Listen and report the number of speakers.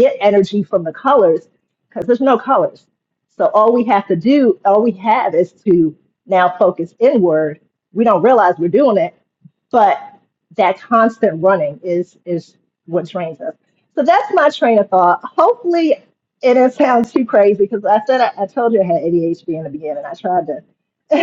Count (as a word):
one